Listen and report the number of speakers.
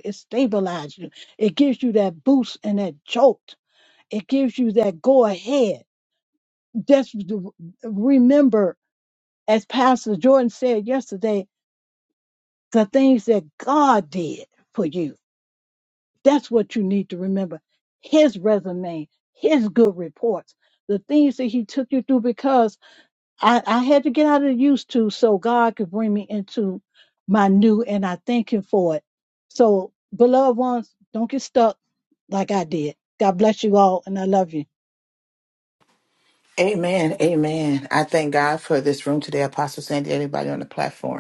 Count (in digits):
2